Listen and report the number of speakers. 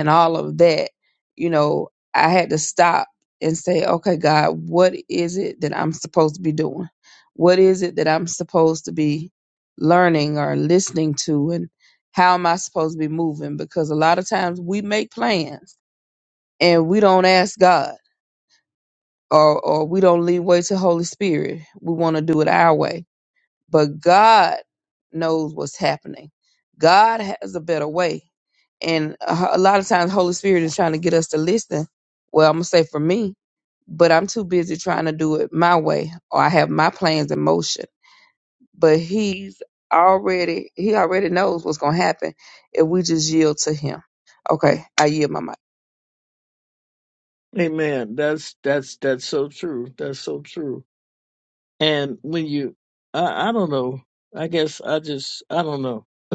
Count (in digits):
2